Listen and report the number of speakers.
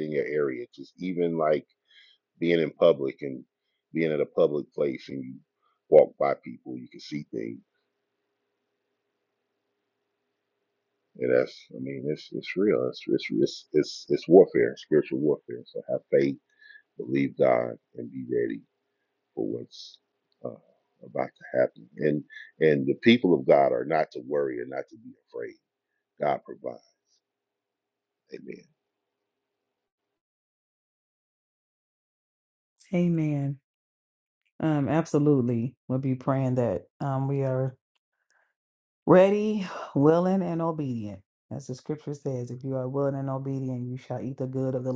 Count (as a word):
two